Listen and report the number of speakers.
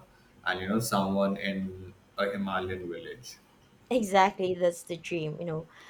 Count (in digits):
2